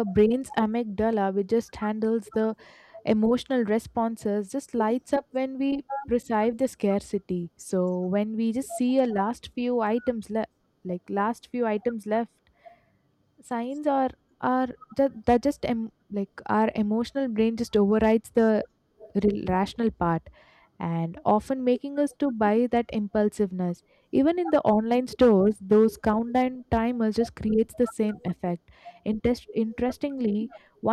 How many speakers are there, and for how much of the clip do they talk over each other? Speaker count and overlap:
1, no overlap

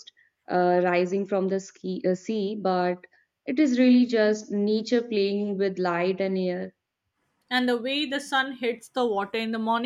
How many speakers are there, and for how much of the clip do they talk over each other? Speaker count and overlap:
2, no overlap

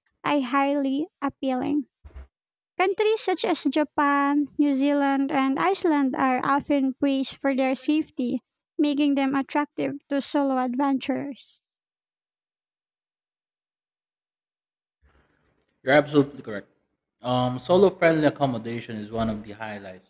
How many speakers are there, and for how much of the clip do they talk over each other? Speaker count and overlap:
2, no overlap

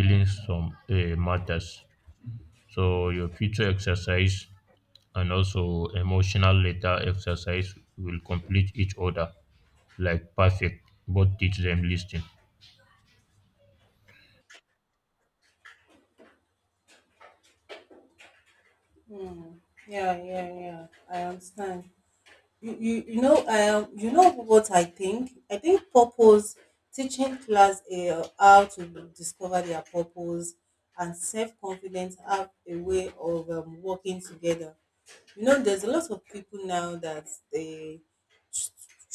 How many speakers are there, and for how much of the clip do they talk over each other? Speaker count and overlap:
2, no overlap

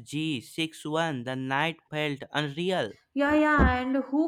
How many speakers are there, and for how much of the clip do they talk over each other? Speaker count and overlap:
2, no overlap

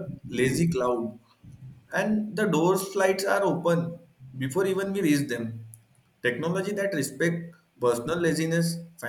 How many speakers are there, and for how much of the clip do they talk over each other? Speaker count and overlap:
1, no overlap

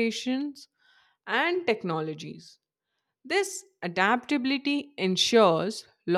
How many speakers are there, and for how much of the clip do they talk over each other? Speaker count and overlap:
1, no overlap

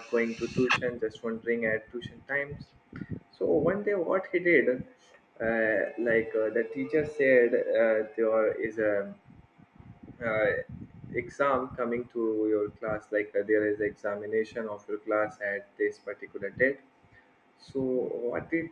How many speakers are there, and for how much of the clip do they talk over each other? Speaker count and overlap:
1, no overlap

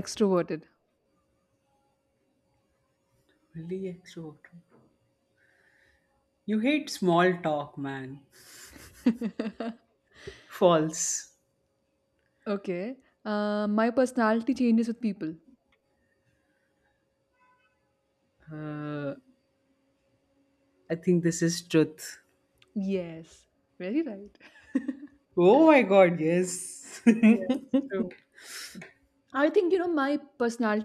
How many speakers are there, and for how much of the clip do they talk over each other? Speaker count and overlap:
2, no overlap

